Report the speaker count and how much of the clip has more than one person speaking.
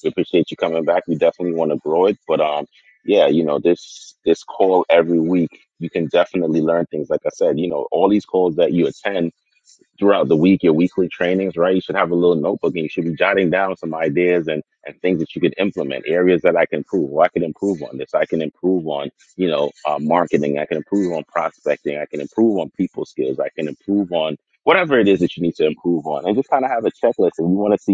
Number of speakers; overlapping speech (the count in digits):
1, no overlap